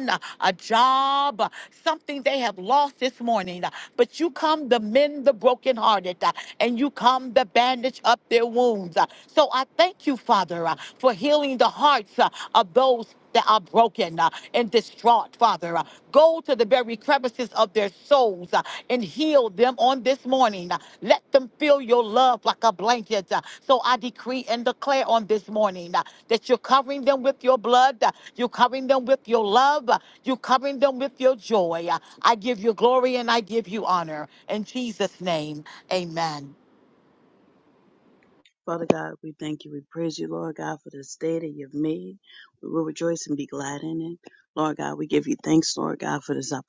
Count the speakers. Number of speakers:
2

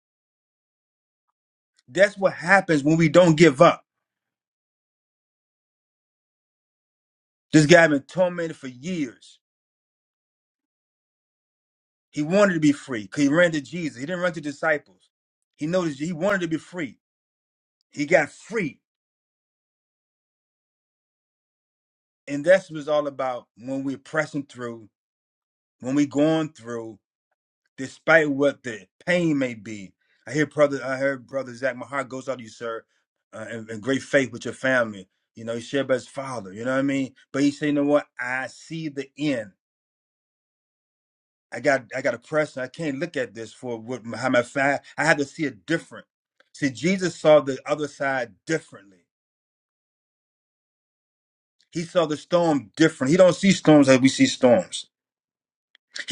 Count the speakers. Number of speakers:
1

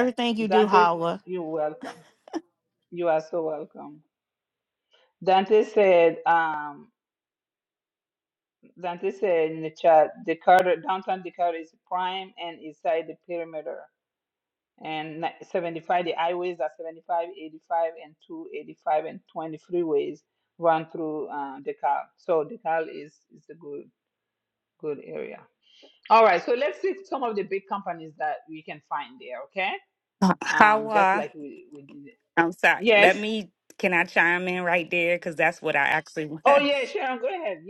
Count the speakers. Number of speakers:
3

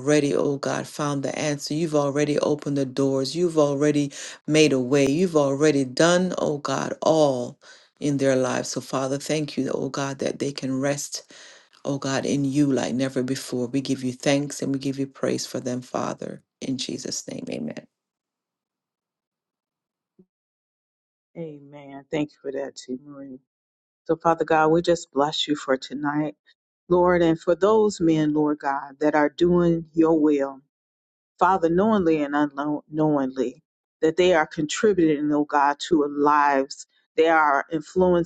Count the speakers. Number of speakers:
2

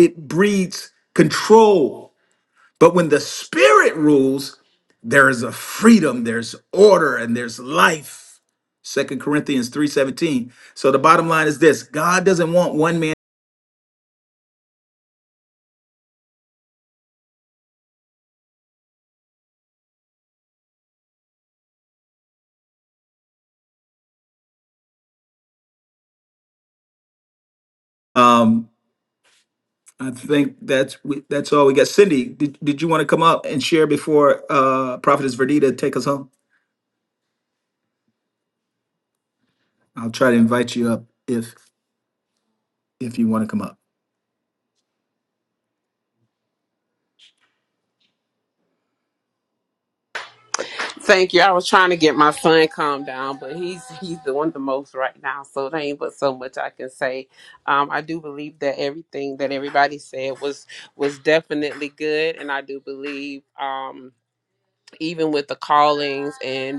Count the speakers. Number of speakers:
2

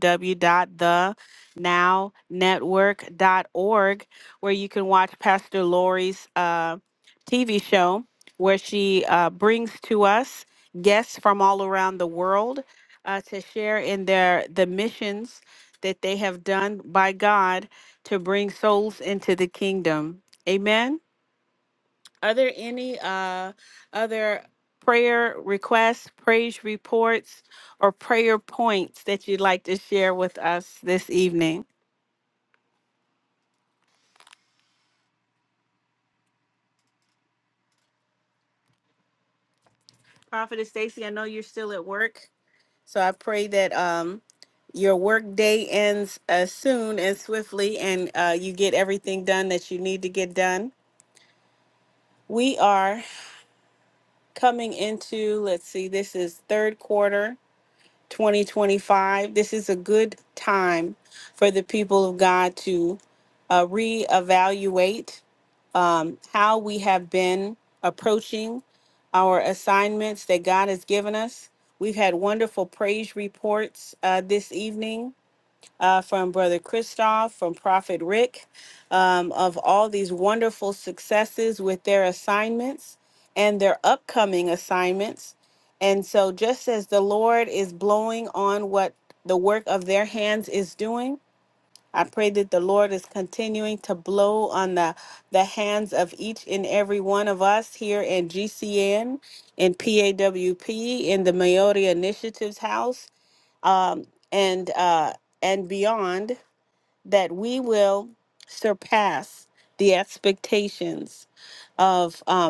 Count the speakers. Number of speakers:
1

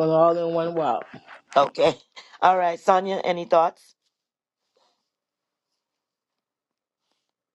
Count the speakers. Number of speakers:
2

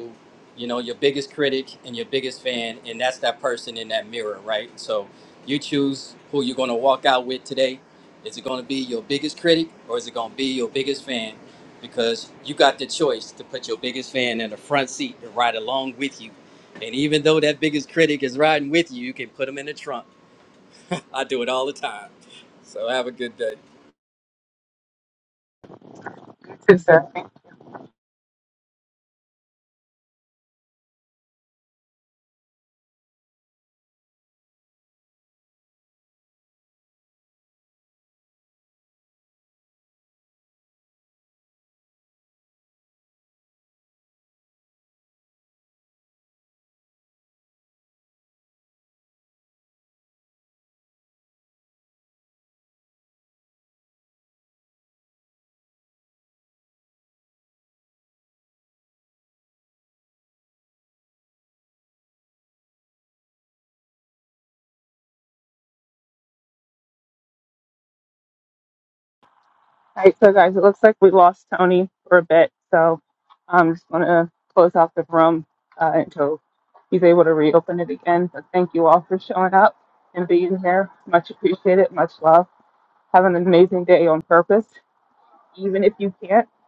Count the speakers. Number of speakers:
2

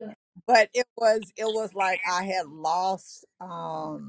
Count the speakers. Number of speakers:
1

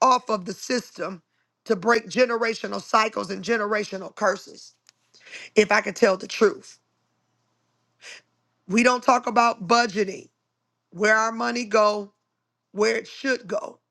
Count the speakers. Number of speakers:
1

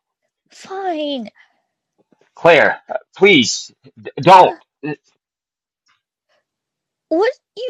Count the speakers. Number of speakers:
2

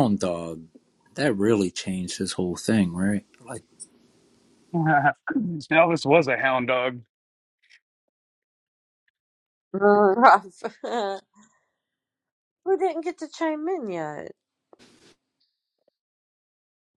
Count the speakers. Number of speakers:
3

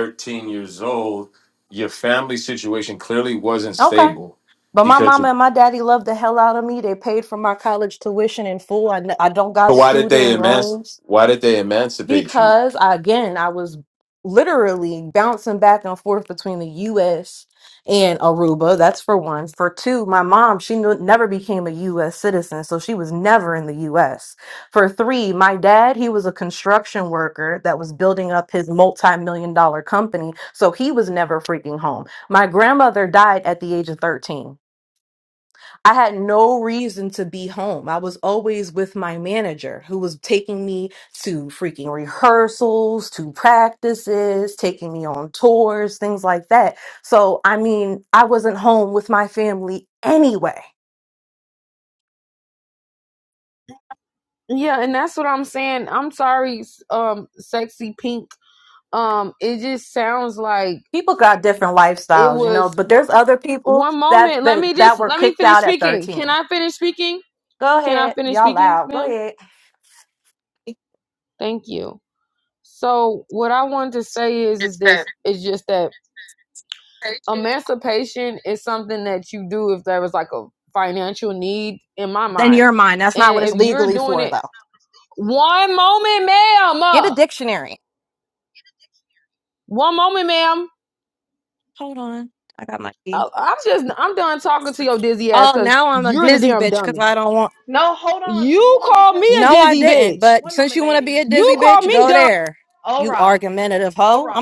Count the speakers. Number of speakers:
4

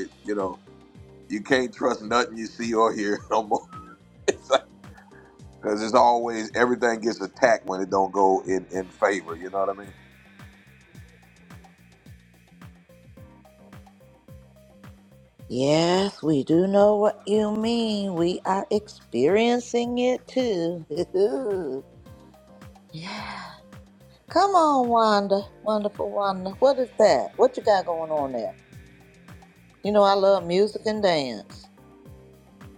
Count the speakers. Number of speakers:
2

